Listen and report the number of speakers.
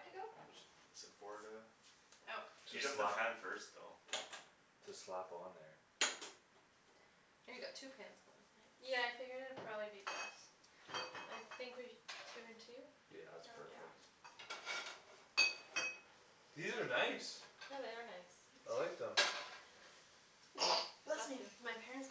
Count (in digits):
4